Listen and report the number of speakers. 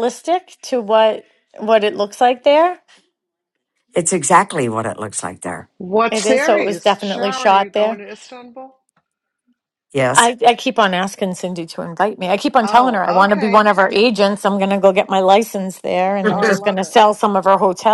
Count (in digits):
3